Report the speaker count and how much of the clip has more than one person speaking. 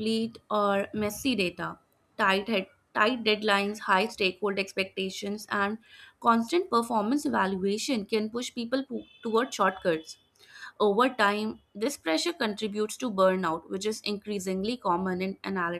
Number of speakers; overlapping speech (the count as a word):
one, no overlap